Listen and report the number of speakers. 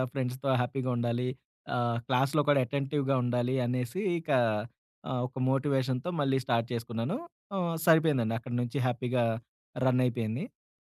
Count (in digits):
1